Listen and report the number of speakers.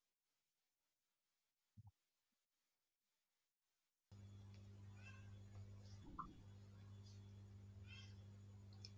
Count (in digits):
0